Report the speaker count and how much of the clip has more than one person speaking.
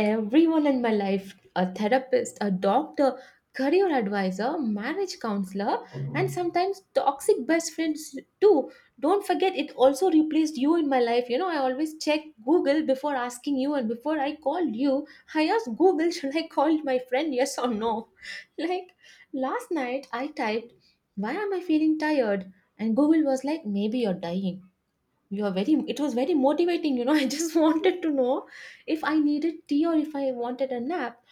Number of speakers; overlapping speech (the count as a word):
one, no overlap